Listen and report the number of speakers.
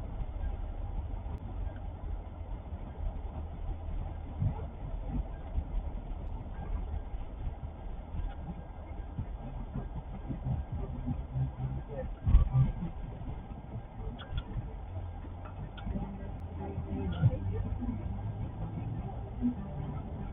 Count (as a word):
zero